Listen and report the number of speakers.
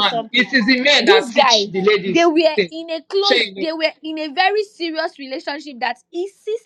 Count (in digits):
2